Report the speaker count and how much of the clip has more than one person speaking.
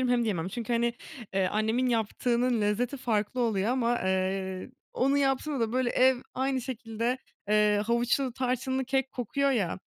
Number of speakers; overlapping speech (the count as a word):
one, no overlap